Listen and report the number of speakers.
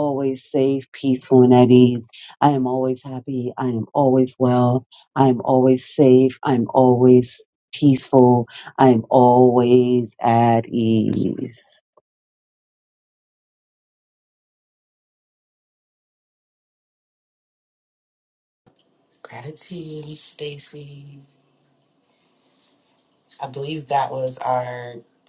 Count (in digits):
2